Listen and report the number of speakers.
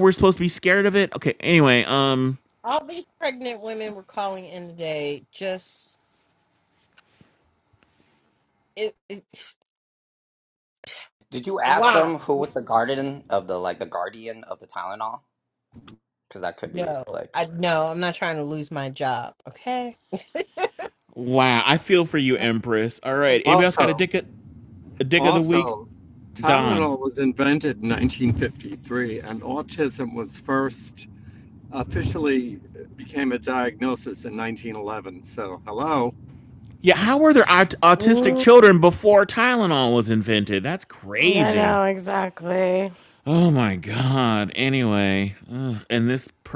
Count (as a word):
five